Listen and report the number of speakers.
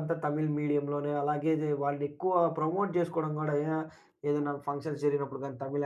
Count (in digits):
1